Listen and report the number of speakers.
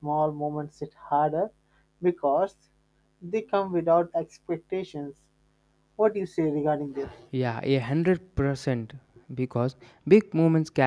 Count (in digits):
2